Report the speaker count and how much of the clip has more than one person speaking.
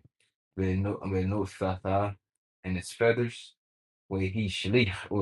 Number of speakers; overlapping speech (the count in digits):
1, no overlap